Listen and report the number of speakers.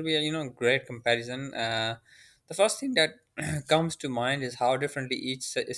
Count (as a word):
one